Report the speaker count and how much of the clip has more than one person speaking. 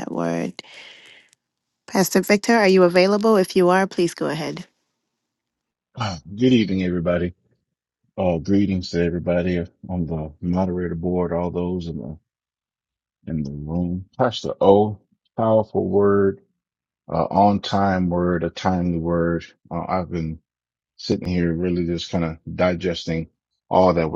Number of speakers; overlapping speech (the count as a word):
two, no overlap